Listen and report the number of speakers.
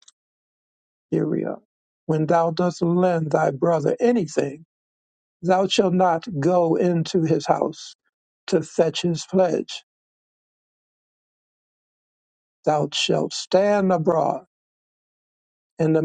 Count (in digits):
1